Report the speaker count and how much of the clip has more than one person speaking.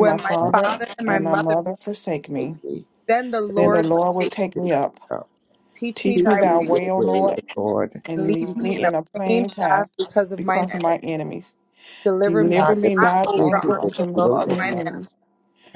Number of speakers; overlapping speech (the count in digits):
3, about 54%